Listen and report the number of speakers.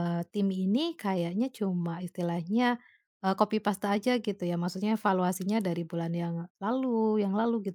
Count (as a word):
one